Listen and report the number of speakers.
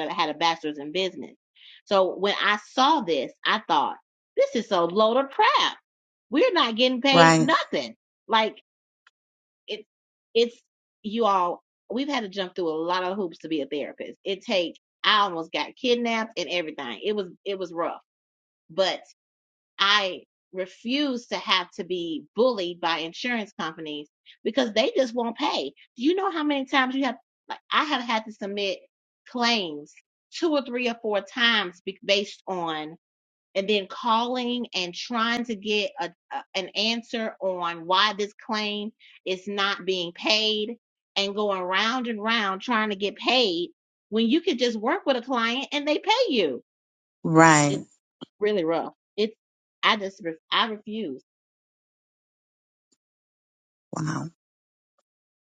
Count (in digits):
2